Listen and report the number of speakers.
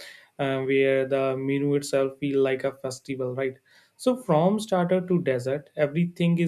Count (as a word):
one